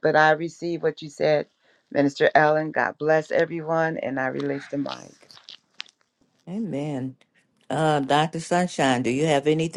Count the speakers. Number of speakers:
2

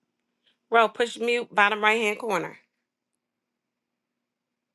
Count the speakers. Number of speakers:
1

